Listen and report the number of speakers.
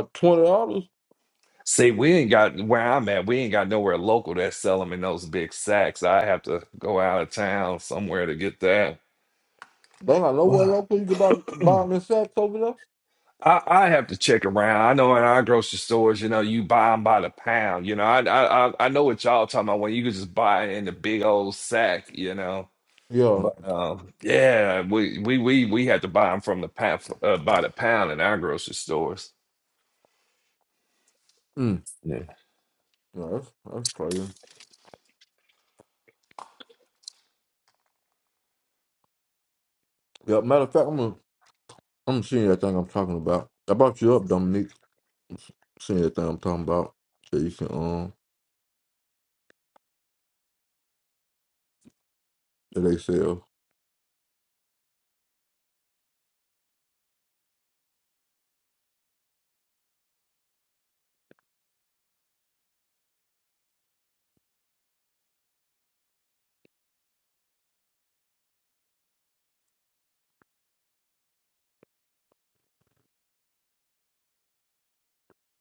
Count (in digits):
2